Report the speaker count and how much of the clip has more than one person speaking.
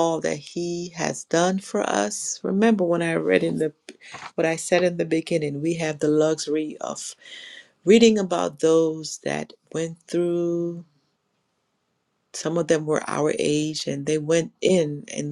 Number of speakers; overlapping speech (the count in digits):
1, no overlap